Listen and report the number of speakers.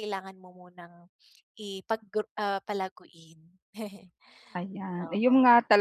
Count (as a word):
two